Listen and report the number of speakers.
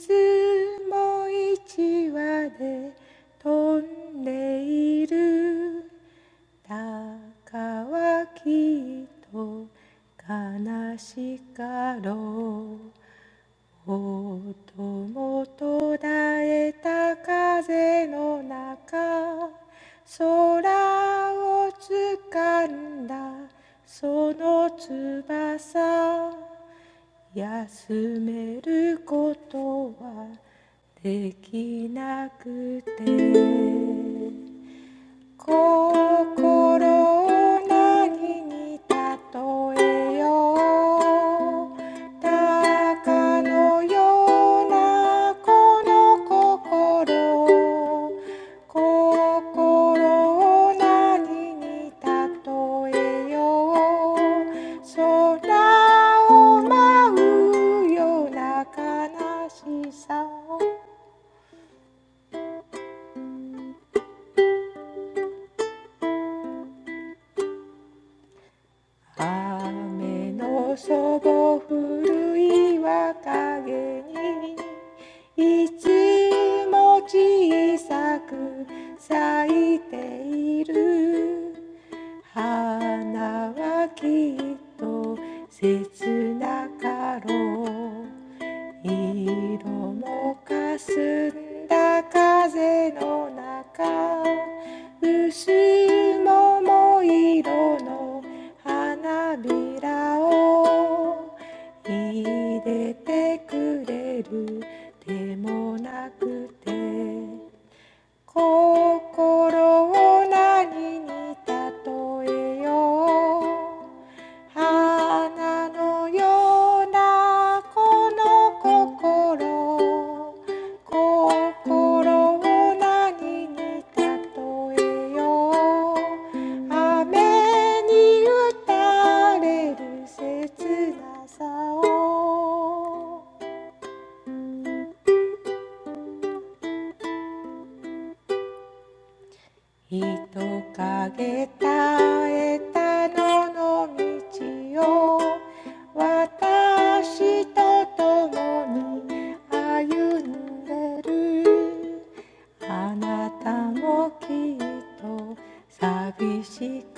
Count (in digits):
1